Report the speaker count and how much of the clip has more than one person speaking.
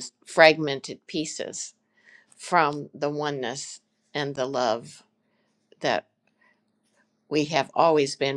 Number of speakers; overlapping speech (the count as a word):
one, no overlap